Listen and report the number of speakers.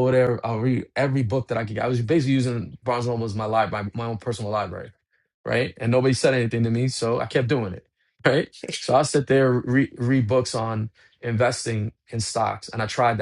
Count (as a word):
one